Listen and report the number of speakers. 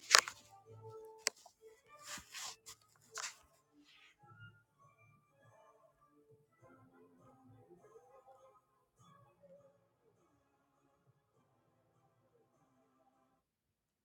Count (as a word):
zero